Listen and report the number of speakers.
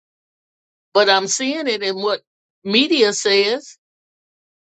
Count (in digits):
1